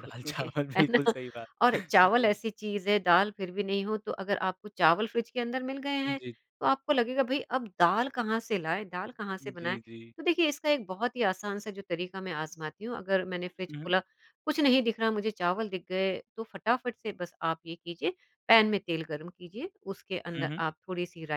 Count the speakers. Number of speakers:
two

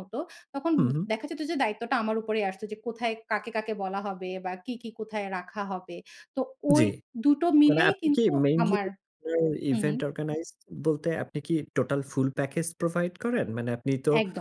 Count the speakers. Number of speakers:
two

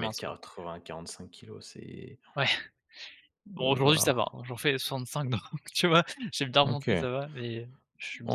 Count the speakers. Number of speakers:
two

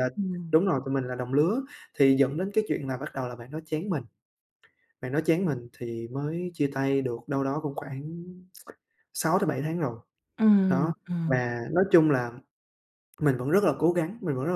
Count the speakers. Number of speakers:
two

